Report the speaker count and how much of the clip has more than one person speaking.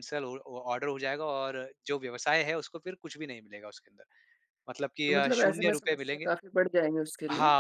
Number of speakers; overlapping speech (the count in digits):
2, about 19%